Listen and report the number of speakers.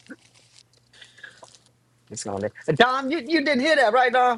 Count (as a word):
one